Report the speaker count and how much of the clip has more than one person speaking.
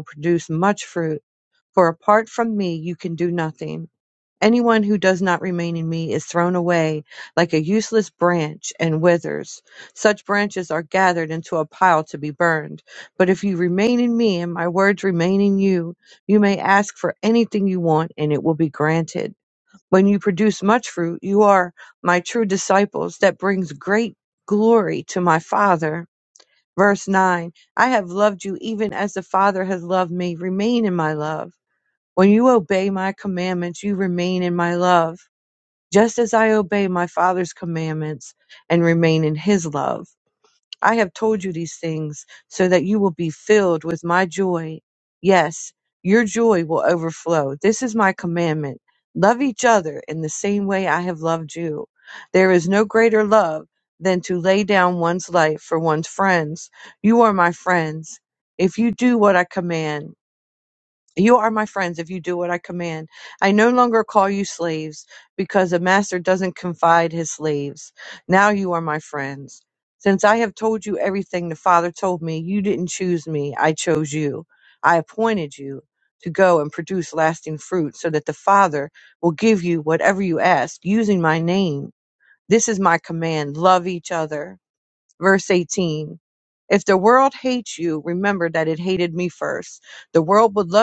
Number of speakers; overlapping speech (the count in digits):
1, no overlap